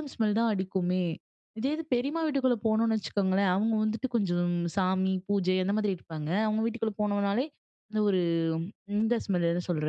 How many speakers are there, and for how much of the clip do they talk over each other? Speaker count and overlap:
1, no overlap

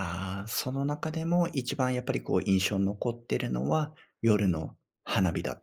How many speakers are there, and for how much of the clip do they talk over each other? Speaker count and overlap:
1, no overlap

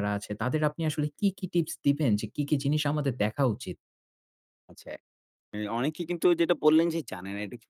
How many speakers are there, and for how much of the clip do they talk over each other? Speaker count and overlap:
2, no overlap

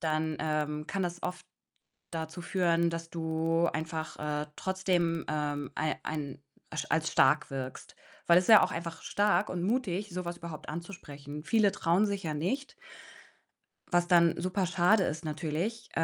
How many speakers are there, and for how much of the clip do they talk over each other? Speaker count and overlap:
1, no overlap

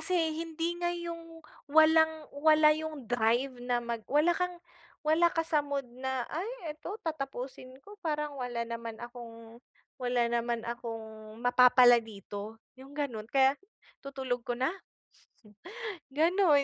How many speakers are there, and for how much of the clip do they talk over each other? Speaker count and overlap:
1, no overlap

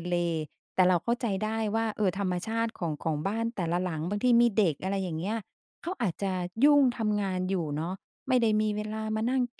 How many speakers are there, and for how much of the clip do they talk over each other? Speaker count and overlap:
1, no overlap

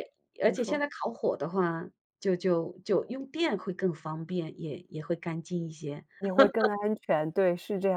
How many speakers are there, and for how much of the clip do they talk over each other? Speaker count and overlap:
2, about 4%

